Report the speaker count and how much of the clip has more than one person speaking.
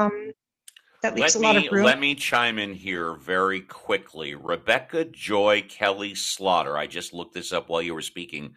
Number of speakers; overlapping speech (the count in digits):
2, about 10%